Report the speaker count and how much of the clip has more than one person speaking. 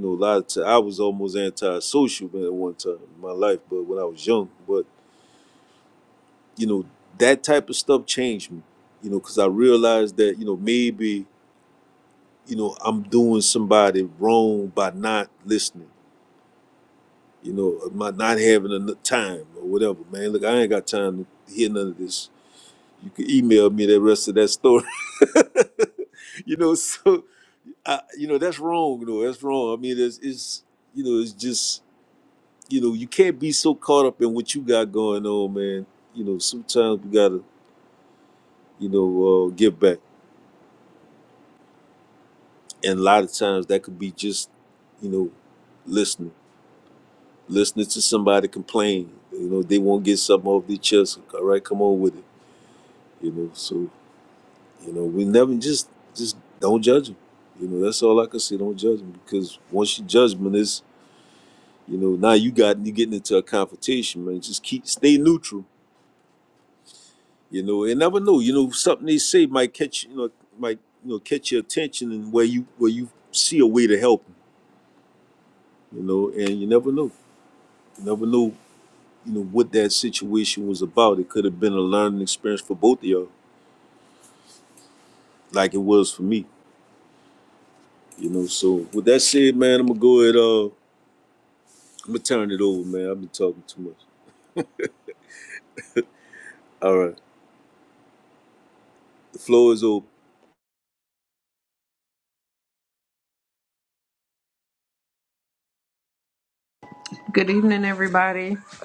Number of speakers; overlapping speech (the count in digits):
2, no overlap